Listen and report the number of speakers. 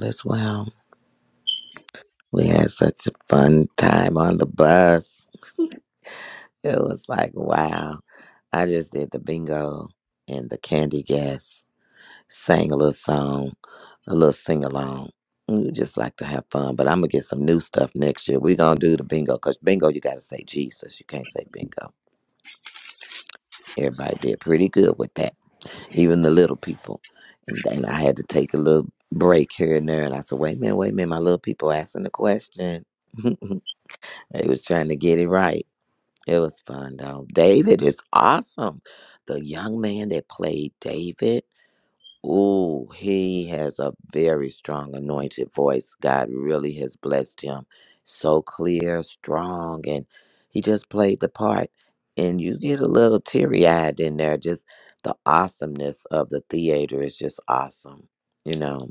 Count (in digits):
1